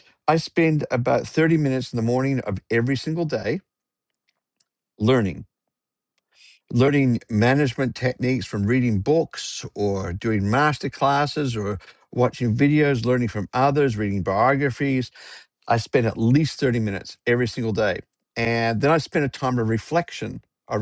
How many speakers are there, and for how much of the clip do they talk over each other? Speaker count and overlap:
1, no overlap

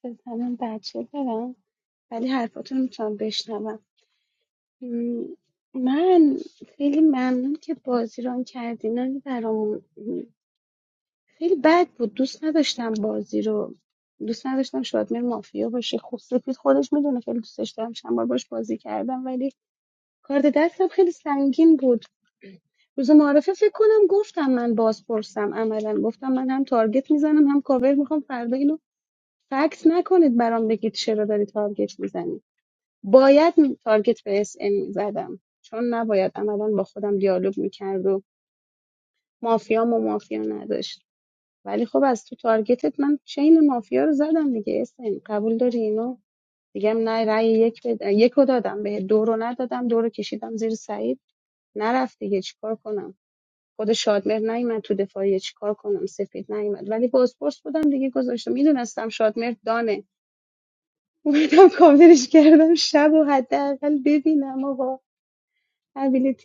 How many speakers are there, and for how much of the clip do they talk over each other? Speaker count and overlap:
1, no overlap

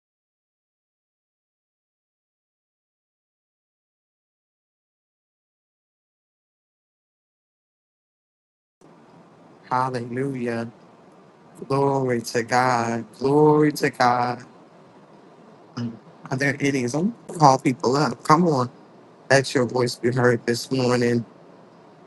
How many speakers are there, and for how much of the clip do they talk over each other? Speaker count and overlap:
1, no overlap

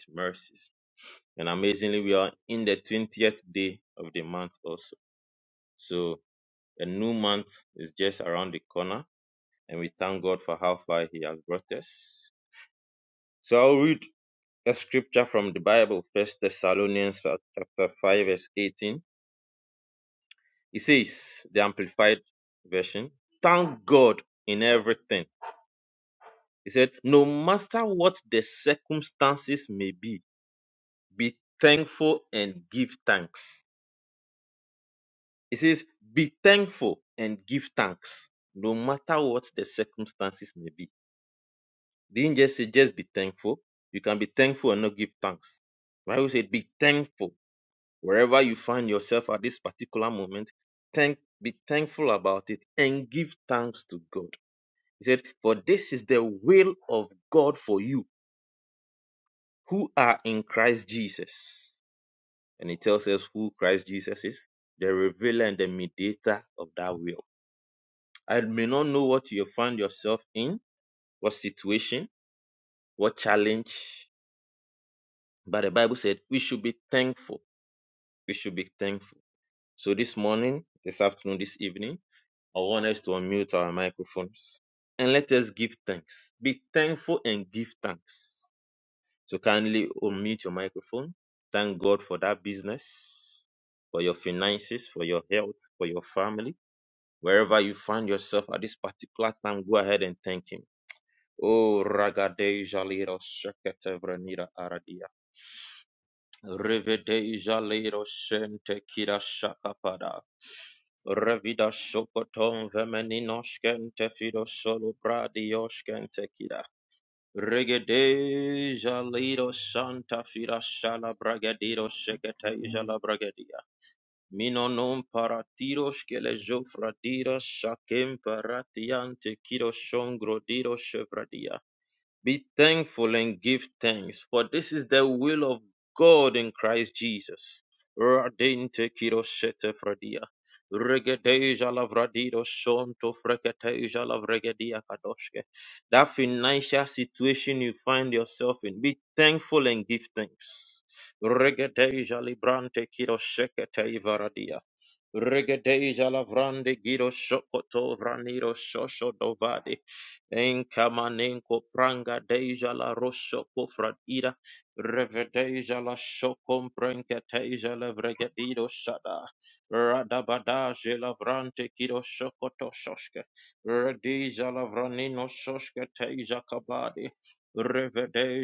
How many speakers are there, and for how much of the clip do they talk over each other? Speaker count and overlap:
1, no overlap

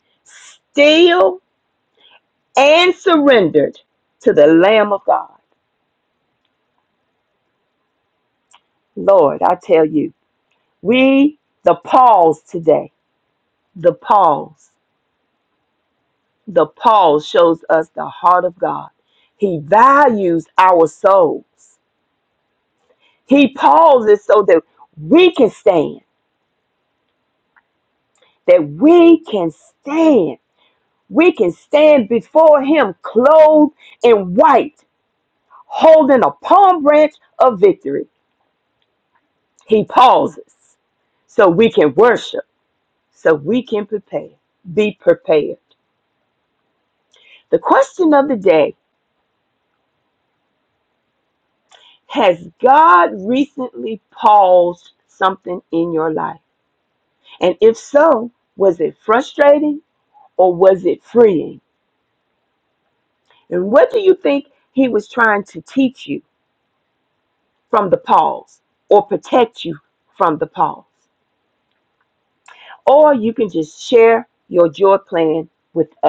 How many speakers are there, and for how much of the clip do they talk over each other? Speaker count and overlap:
1, no overlap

